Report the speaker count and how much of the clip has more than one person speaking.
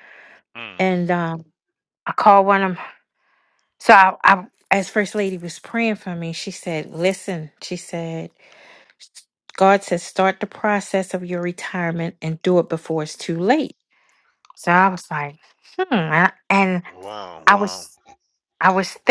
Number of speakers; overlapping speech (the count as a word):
two, about 1%